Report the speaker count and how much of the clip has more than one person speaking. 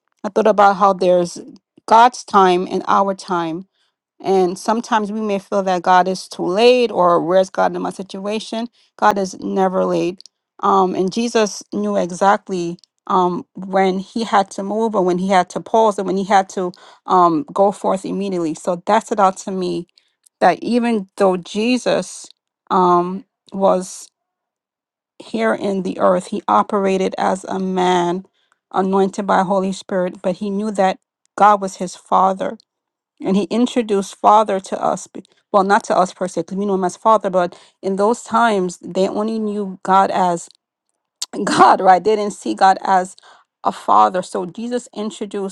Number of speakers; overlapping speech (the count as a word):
one, no overlap